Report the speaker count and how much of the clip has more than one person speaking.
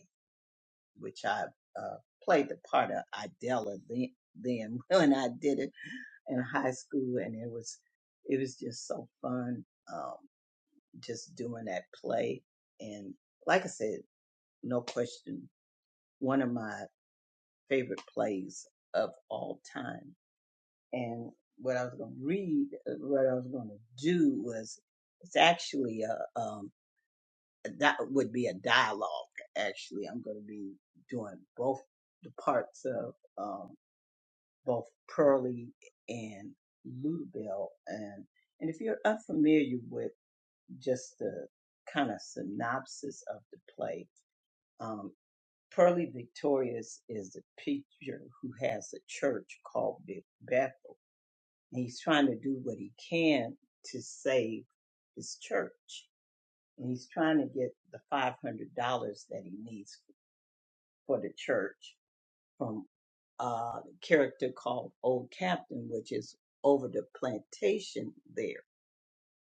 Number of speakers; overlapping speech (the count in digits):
1, no overlap